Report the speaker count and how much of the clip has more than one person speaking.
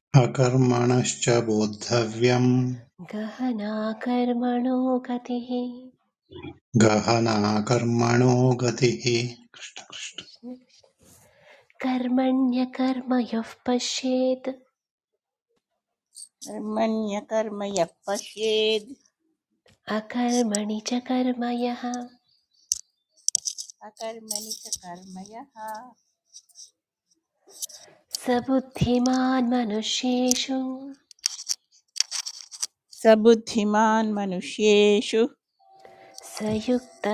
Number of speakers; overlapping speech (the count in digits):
3, no overlap